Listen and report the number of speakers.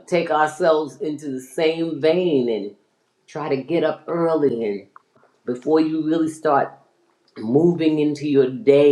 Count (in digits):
1